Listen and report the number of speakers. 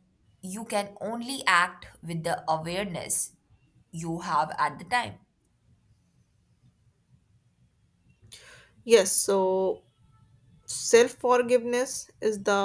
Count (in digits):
2